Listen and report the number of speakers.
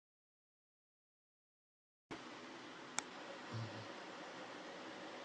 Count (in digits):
0